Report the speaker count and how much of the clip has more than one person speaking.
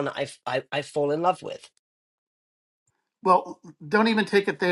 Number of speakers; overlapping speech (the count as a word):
two, no overlap